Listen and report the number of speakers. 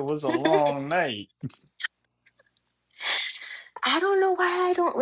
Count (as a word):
two